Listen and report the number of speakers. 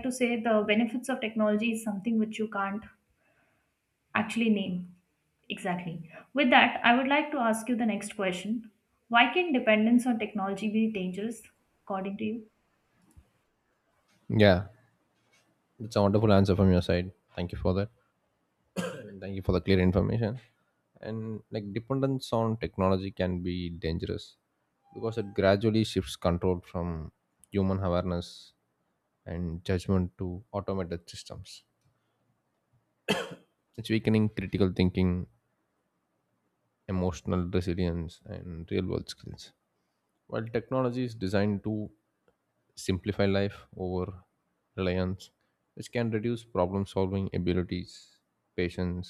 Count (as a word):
two